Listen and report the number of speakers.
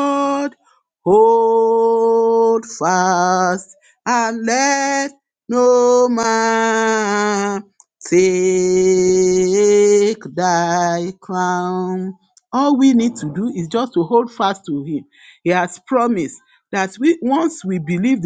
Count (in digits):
1